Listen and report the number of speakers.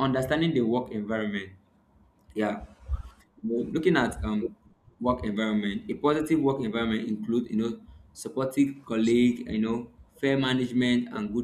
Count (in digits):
1